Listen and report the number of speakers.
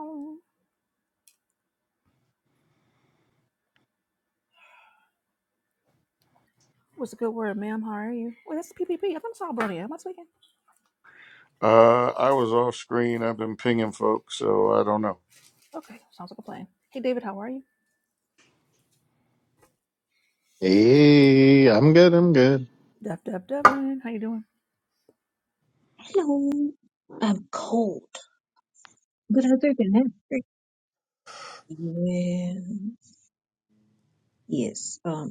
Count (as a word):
four